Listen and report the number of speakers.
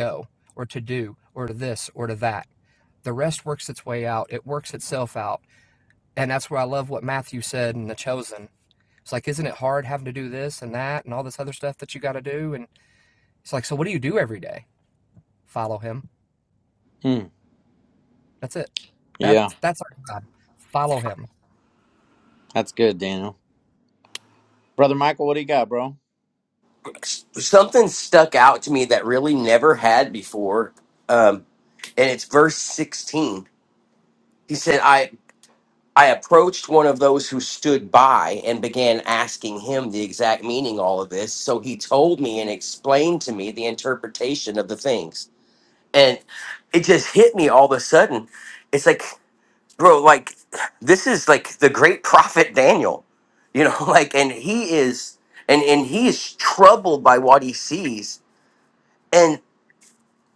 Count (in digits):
3